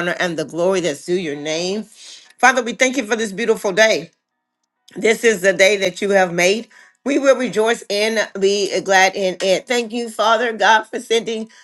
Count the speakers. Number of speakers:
one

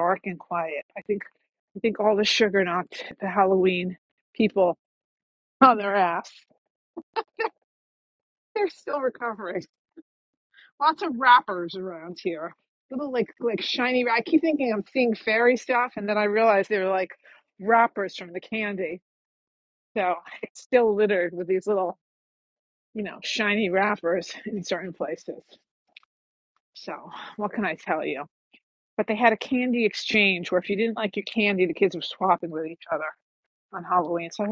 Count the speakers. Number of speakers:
one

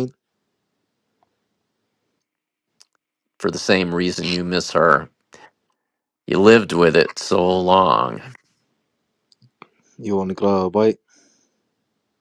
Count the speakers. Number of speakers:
two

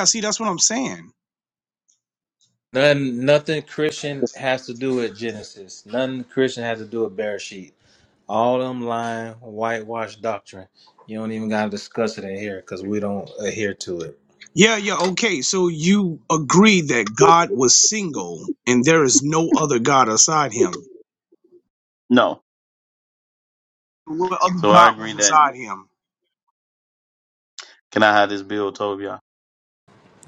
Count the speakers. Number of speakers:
three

